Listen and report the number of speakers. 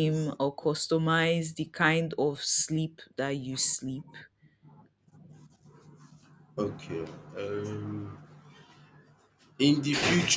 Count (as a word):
two